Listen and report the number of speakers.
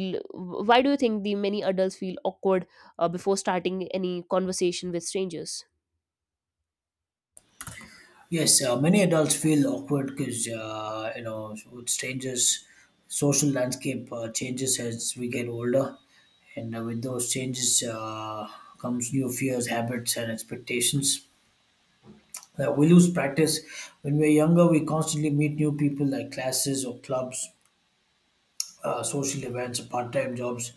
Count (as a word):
two